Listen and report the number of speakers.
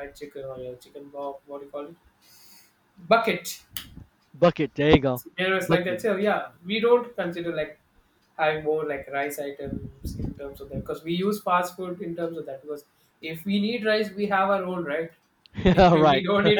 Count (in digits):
2